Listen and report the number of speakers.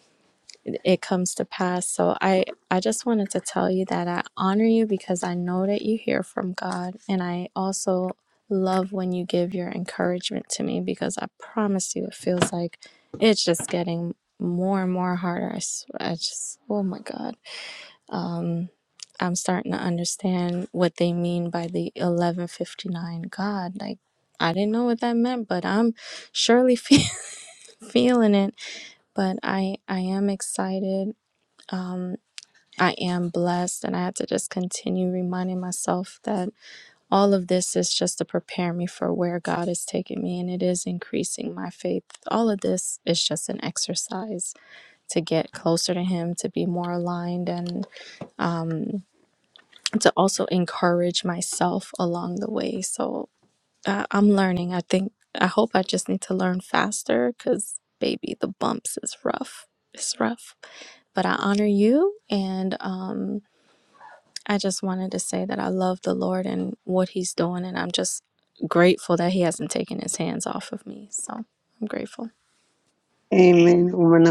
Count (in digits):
2